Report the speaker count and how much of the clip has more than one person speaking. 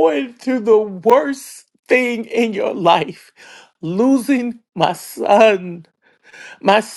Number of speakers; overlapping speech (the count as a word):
one, no overlap